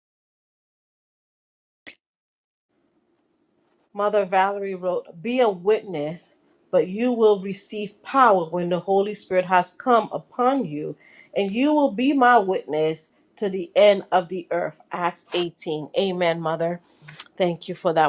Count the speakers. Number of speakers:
1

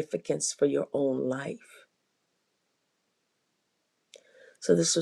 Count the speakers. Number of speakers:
1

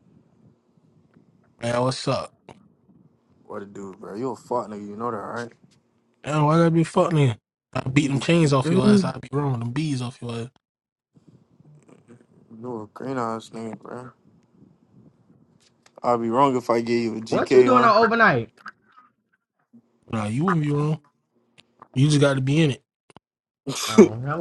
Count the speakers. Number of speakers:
3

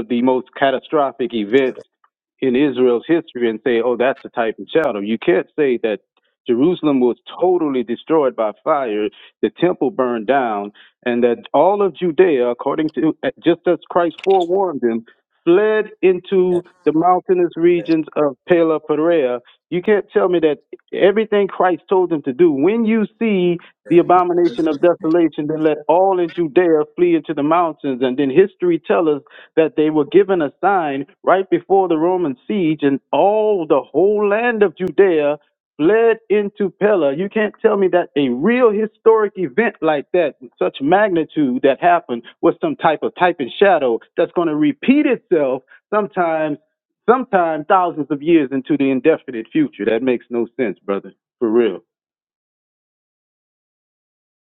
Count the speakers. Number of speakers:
1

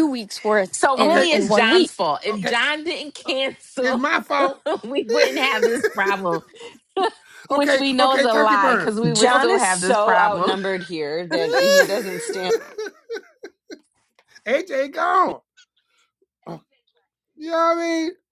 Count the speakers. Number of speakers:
4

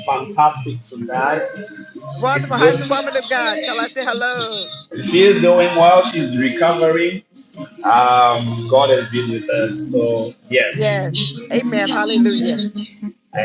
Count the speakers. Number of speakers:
2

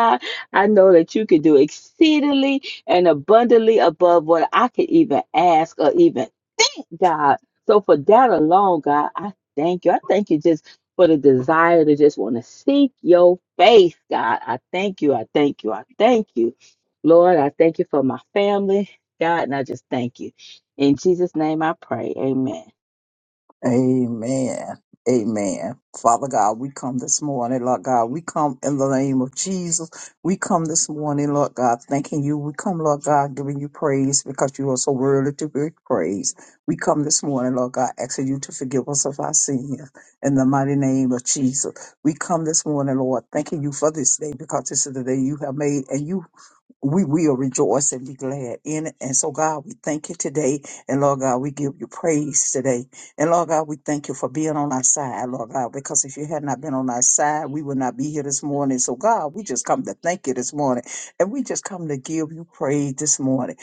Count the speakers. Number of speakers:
2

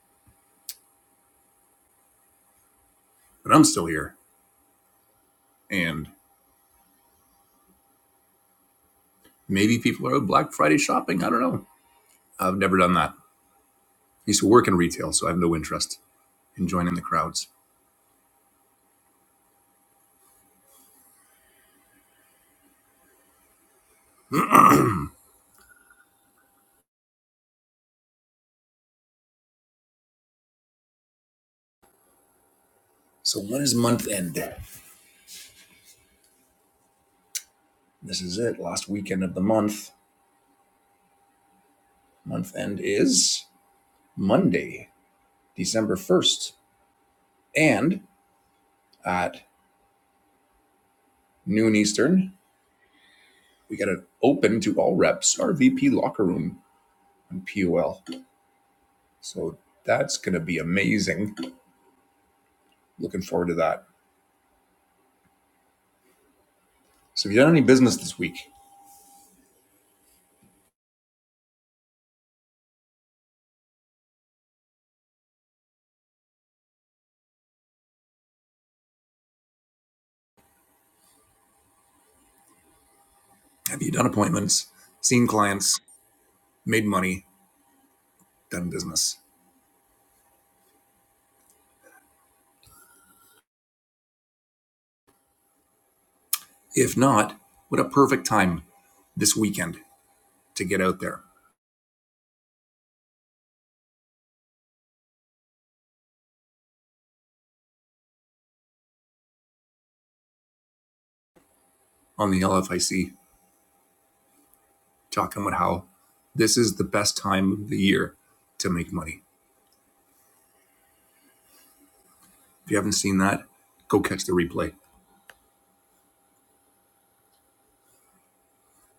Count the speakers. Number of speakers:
1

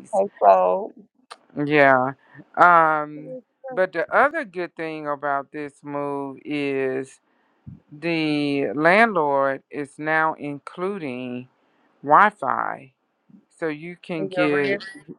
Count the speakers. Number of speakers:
2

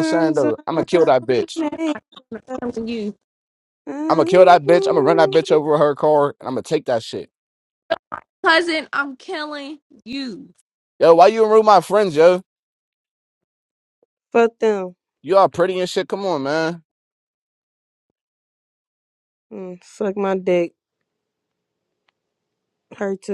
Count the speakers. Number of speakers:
3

